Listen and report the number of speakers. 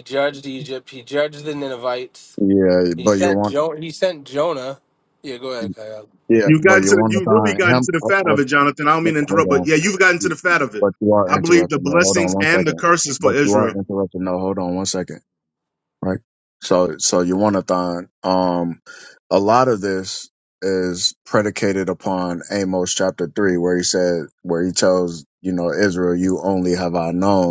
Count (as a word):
three